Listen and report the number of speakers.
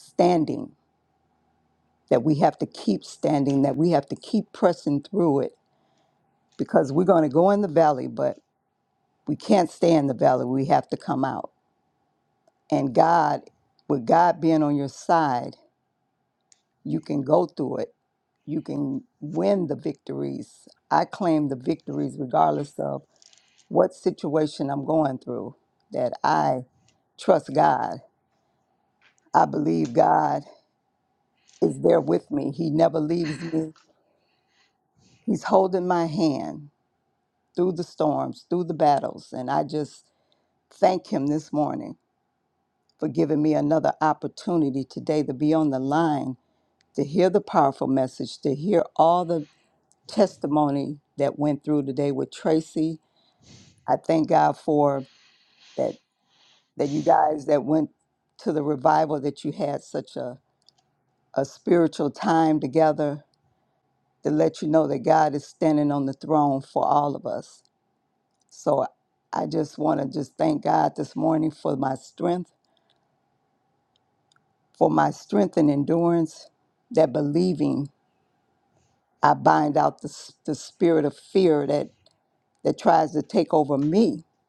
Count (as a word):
one